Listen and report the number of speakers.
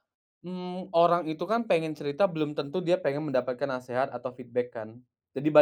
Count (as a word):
one